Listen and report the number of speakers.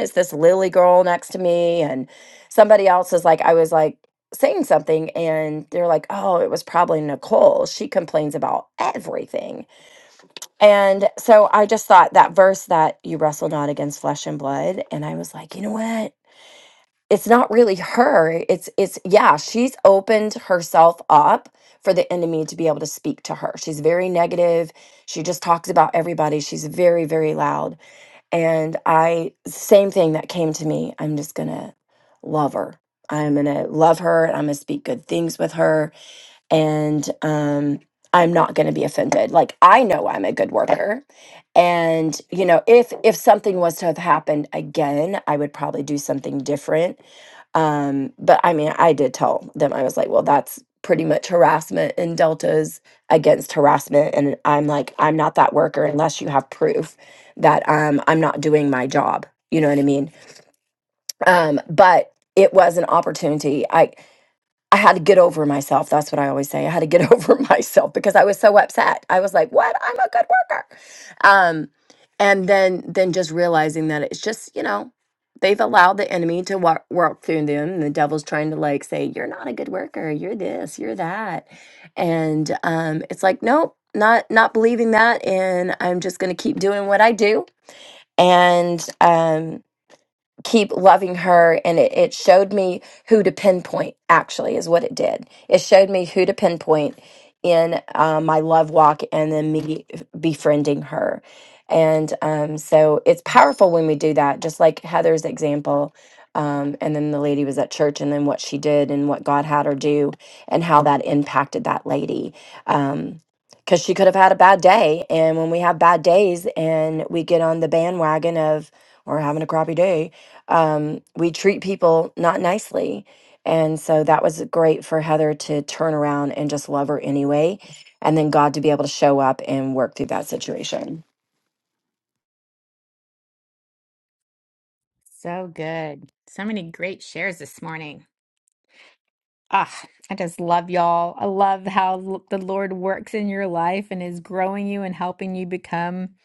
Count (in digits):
2